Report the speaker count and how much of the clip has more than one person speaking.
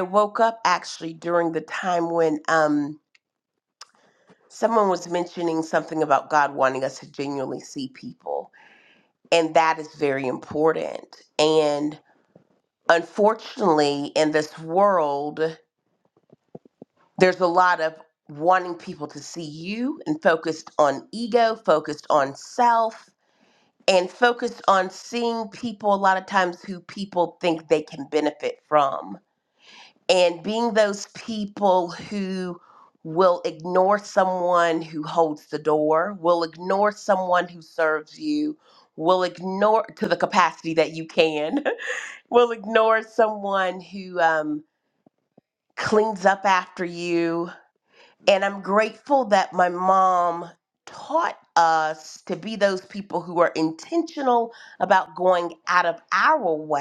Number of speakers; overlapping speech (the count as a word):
one, no overlap